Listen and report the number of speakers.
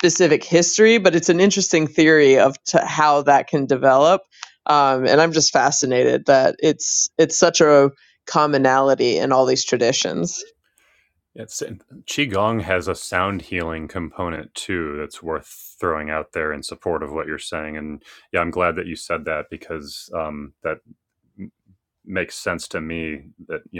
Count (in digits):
2